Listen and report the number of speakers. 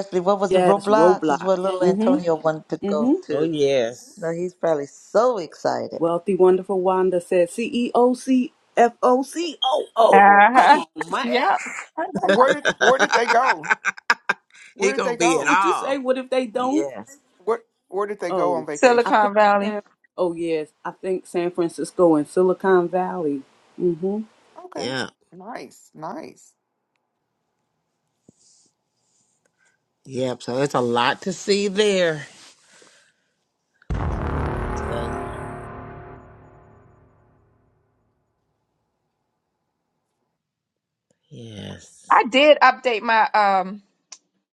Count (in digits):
5